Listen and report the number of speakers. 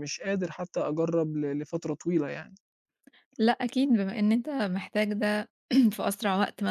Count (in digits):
2